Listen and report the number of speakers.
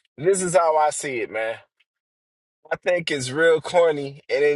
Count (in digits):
1